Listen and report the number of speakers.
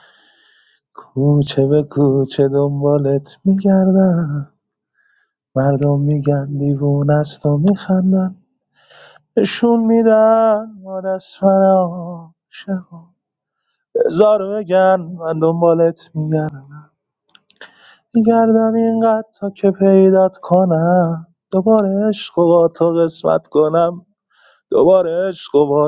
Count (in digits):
1